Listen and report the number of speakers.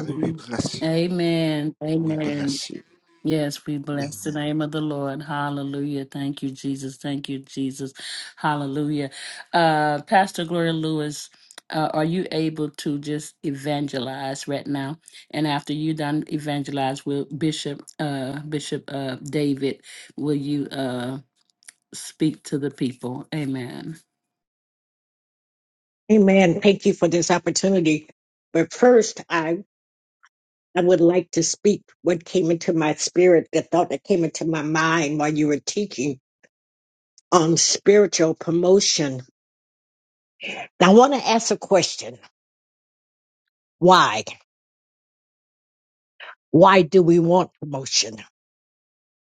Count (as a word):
three